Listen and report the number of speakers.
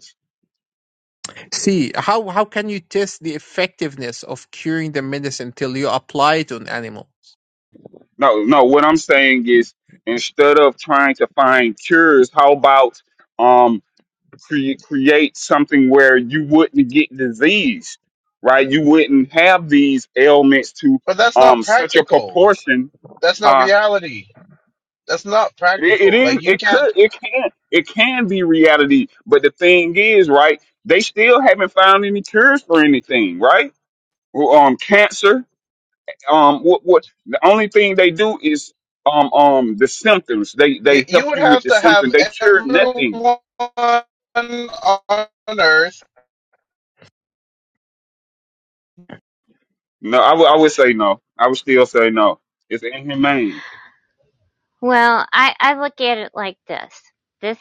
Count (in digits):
4